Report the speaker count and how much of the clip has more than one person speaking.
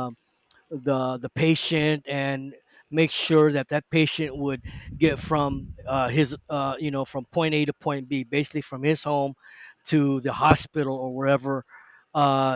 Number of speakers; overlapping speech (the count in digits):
1, no overlap